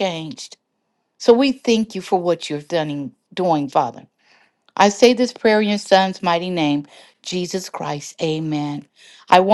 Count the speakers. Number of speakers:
one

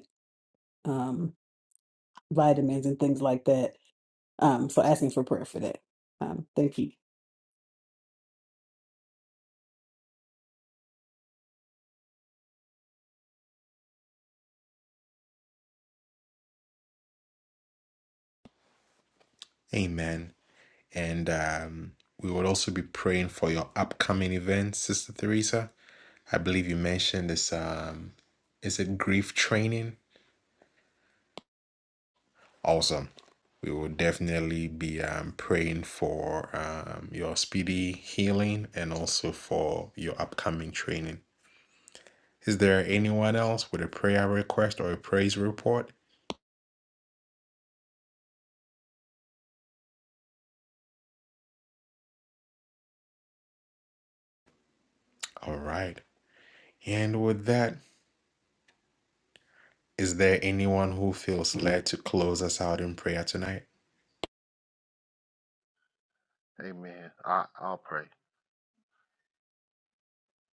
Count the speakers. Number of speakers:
three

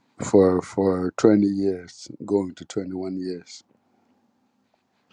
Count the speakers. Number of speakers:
one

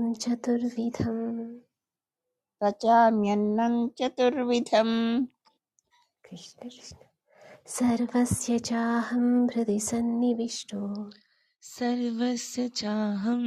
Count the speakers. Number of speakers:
three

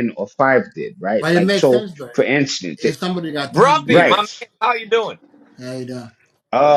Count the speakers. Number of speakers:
three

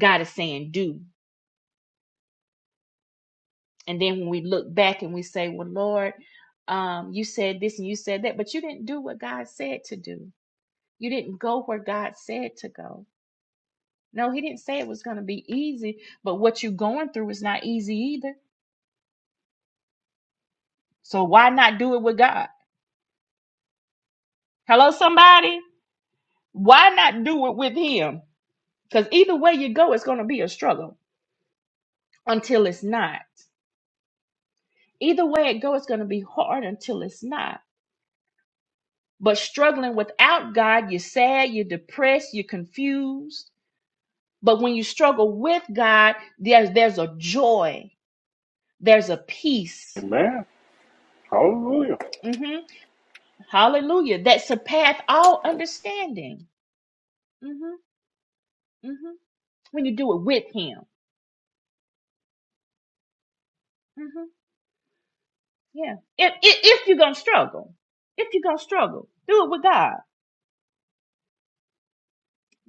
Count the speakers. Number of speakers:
two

